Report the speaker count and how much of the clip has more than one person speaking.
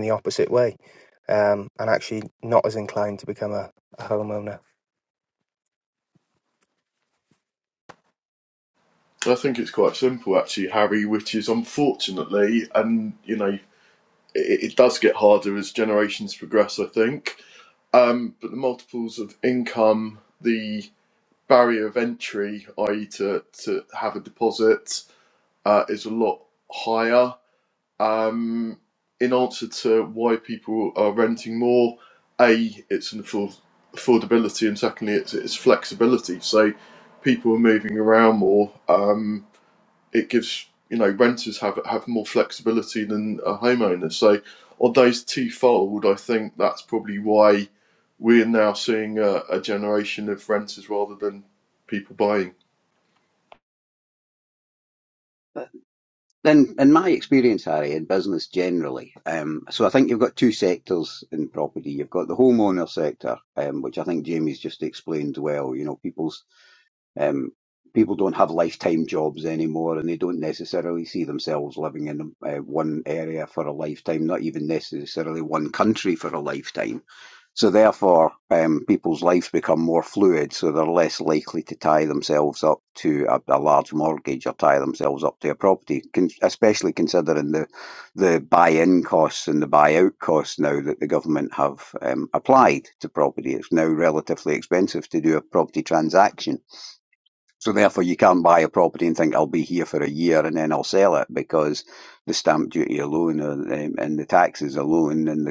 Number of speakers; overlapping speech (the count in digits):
3, no overlap